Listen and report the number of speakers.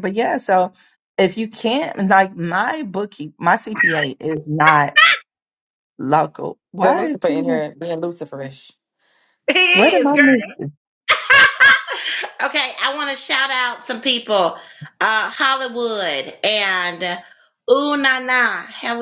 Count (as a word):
three